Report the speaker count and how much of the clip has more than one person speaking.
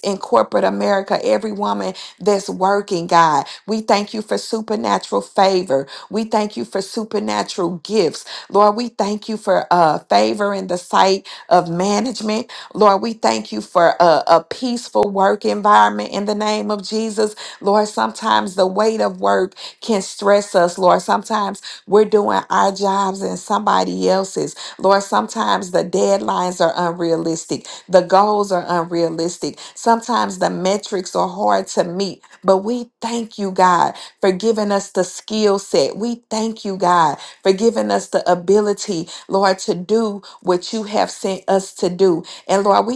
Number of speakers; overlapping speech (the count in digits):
1, no overlap